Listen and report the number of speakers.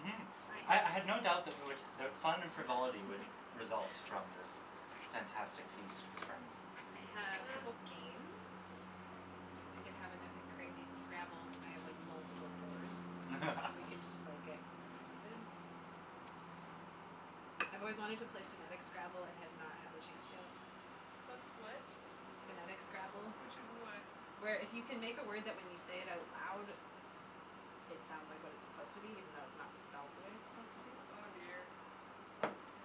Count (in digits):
3